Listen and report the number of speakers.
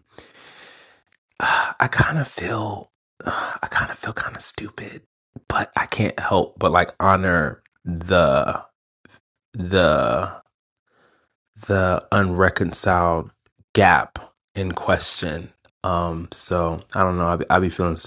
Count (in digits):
1